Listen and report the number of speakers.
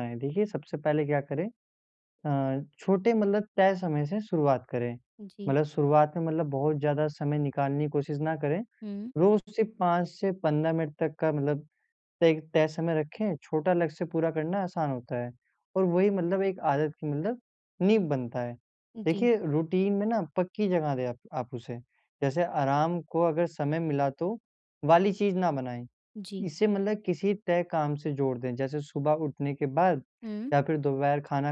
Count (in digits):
2